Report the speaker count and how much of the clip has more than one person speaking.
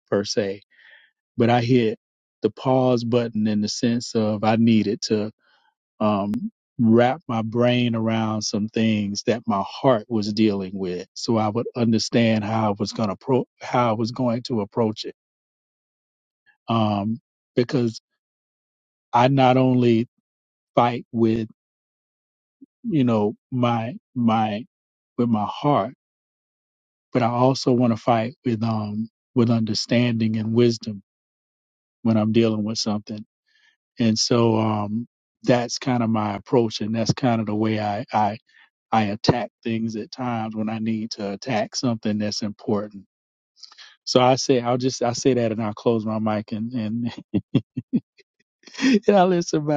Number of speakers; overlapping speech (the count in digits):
1, no overlap